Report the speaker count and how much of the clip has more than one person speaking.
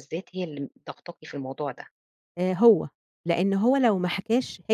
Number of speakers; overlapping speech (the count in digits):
2, no overlap